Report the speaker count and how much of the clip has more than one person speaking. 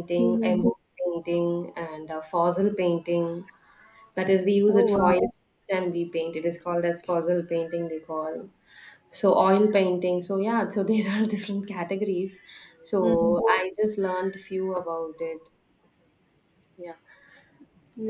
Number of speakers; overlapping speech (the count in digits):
2, about 6%